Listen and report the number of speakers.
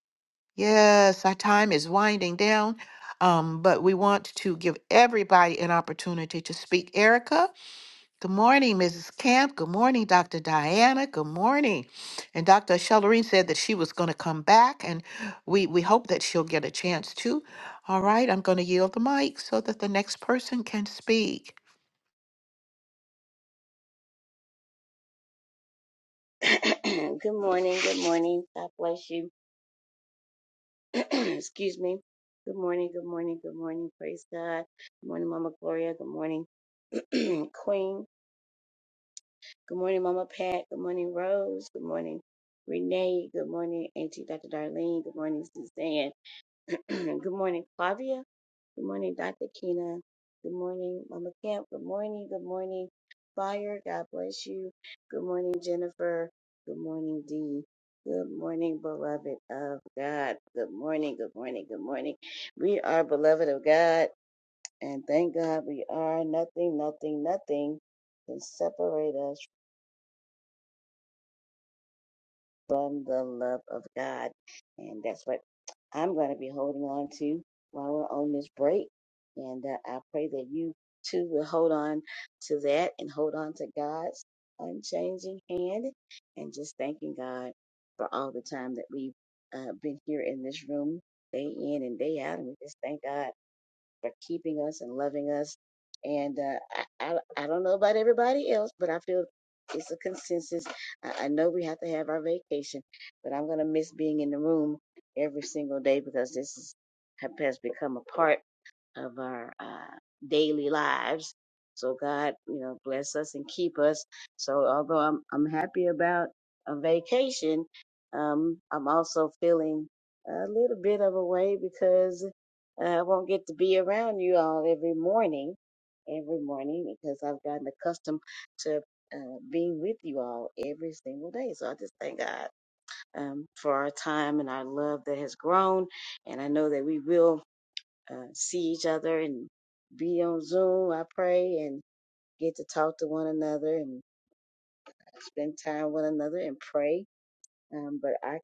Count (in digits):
2